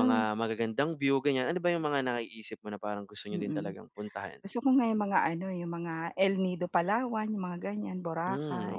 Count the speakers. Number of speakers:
2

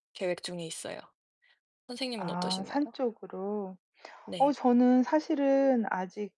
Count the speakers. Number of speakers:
2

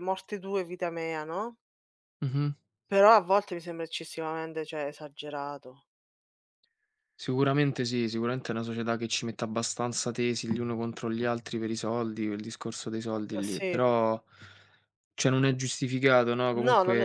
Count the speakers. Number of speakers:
2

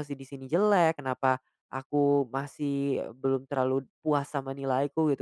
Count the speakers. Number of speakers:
1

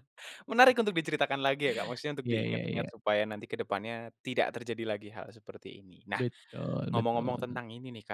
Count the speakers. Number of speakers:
2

